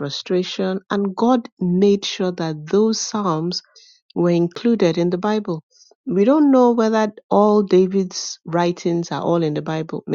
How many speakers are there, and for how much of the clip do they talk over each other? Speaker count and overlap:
one, no overlap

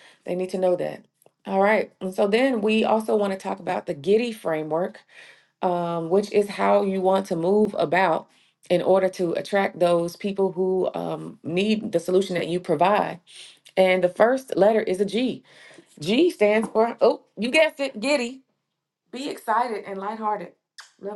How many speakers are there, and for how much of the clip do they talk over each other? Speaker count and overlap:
one, no overlap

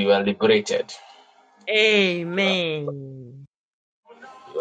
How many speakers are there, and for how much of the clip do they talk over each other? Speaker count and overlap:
two, about 5%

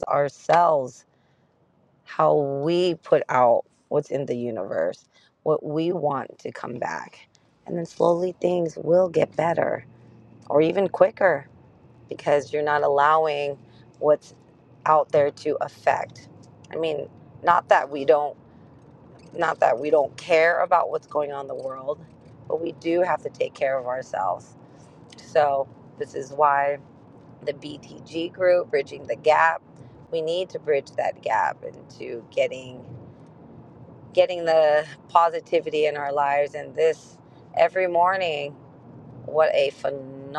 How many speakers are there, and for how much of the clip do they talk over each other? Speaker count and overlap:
one, no overlap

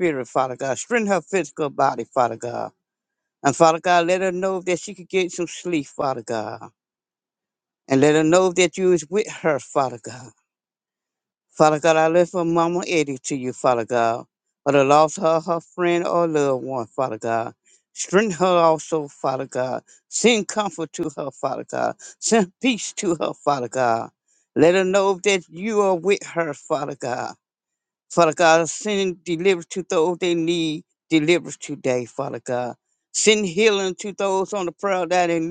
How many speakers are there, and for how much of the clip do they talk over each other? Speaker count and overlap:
one, no overlap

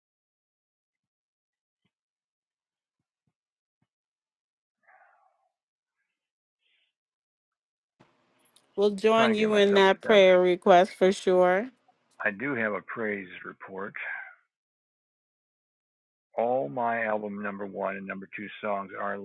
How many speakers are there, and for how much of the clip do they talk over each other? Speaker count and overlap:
two, about 6%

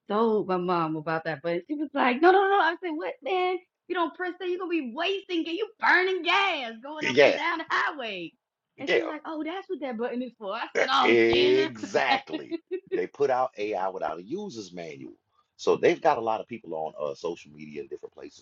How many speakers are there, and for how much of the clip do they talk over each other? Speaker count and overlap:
two, about 7%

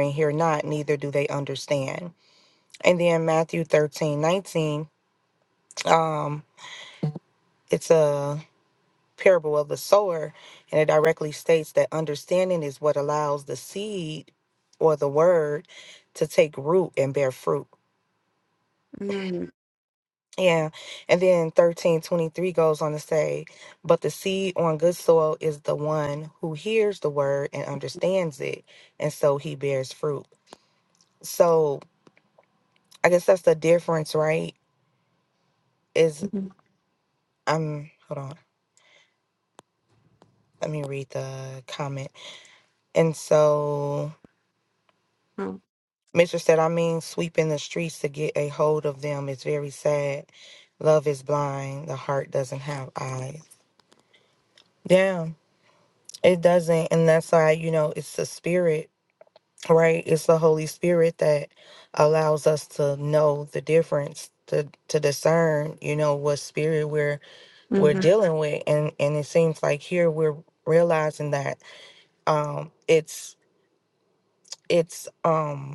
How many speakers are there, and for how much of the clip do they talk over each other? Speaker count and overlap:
two, under 1%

